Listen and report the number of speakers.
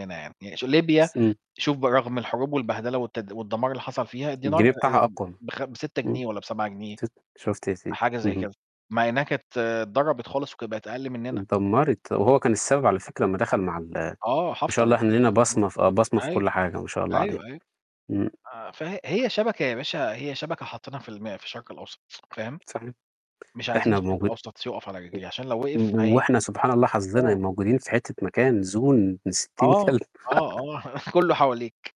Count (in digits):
2